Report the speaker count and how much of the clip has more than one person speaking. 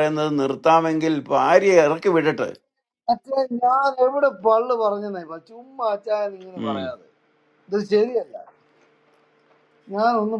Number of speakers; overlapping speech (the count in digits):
2, about 2%